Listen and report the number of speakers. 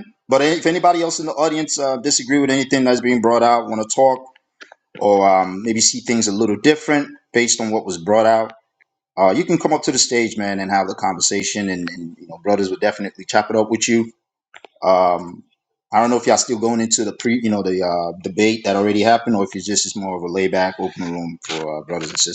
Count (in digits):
1